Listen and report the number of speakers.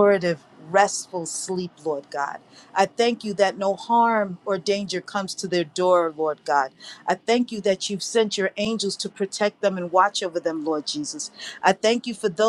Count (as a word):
one